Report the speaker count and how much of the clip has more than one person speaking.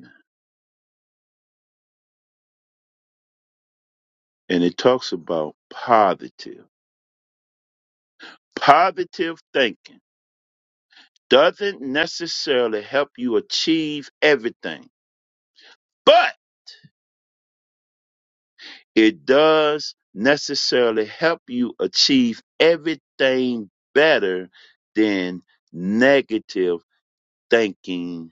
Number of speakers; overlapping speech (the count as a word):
one, no overlap